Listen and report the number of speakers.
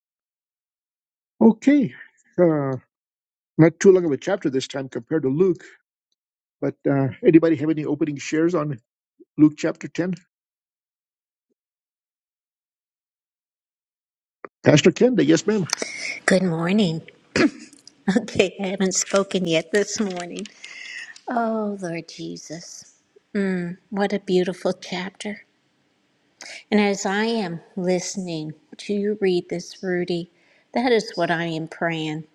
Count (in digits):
2